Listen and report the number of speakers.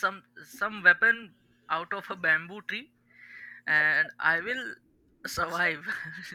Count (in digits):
1